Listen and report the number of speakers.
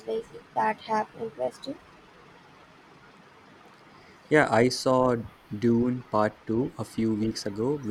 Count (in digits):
2